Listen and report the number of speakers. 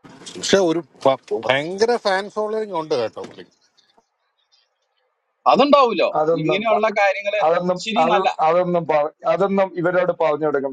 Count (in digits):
3